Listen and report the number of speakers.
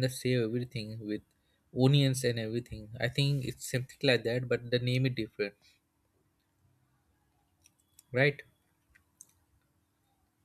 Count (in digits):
1